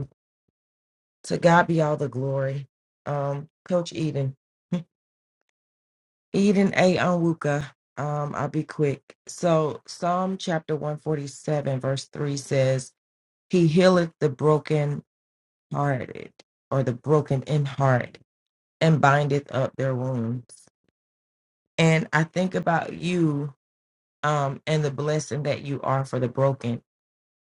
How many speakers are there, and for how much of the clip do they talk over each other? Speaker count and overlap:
one, no overlap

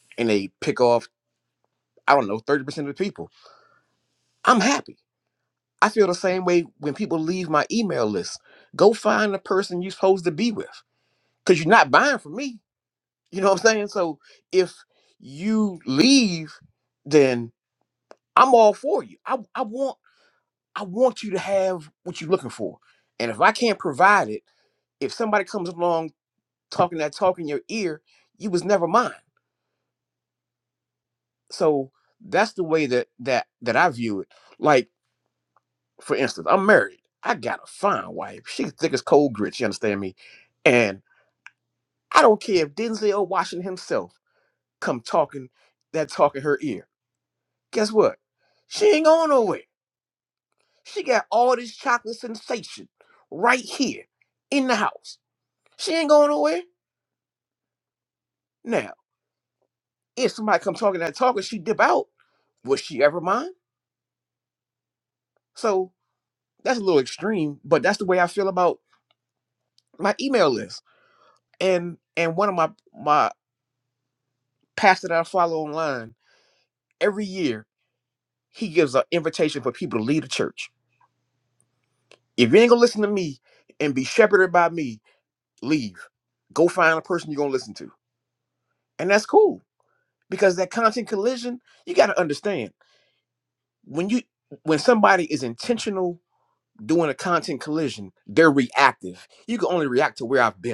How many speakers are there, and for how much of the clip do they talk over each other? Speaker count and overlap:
one, no overlap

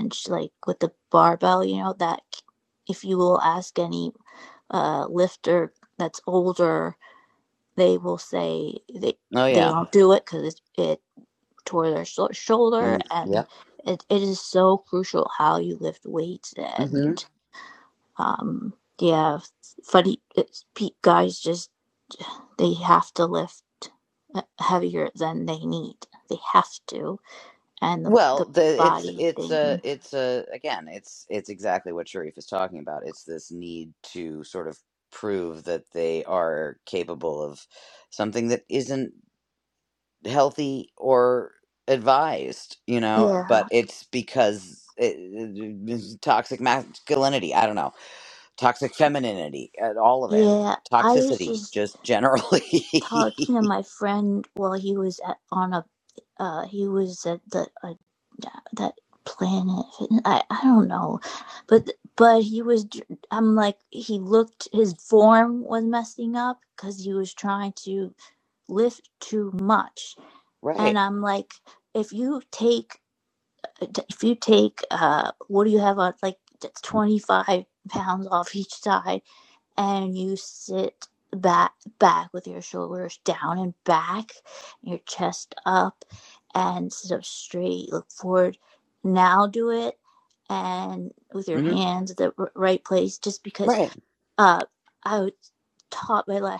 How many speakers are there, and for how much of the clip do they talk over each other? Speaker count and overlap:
two, about 5%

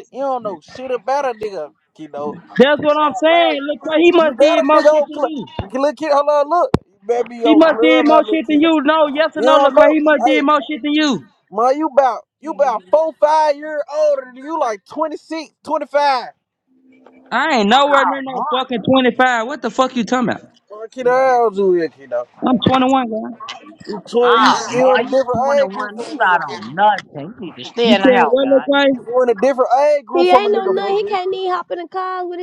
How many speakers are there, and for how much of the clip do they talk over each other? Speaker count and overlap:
four, about 26%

